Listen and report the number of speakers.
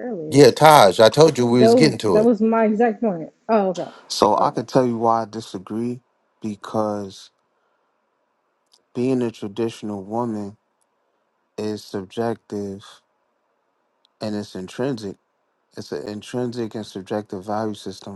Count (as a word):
three